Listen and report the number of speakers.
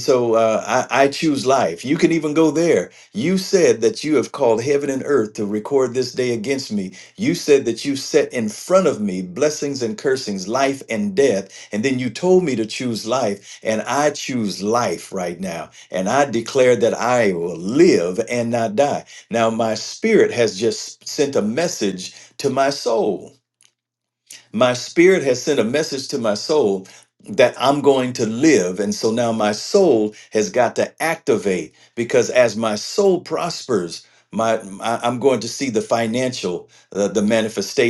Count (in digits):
1